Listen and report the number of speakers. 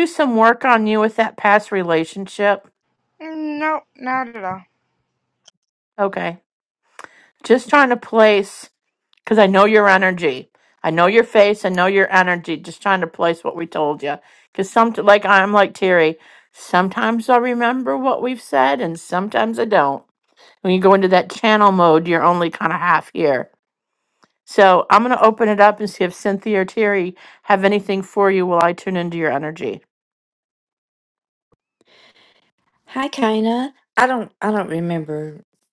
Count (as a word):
three